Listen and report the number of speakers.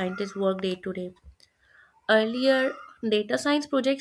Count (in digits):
1